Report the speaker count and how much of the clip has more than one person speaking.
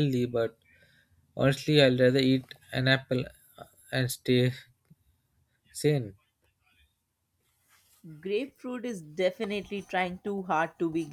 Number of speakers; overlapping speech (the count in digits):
2, no overlap